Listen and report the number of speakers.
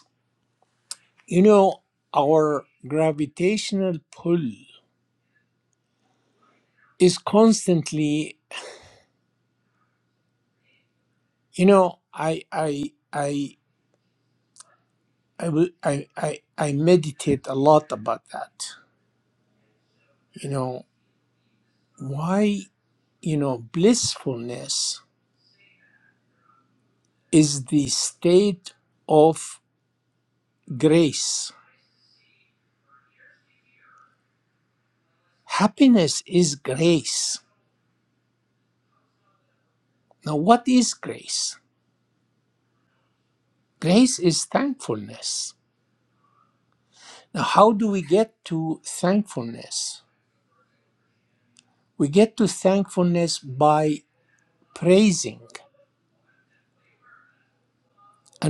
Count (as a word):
one